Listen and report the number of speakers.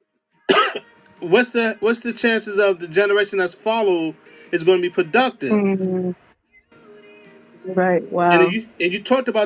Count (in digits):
2